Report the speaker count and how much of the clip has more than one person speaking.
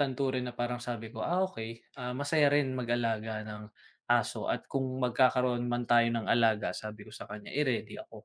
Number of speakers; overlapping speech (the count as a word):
one, no overlap